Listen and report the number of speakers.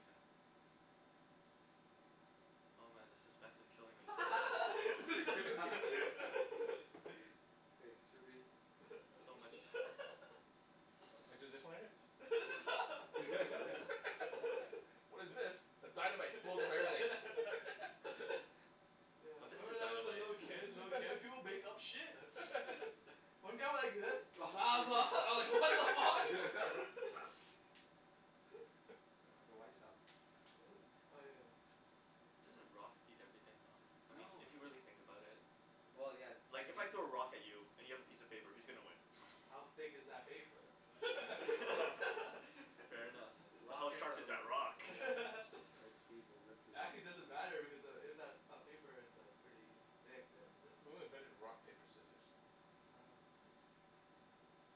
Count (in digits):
4